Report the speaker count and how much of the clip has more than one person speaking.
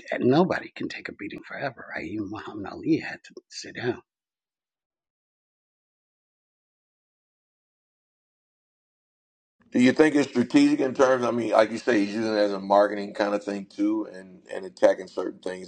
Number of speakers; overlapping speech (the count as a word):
two, no overlap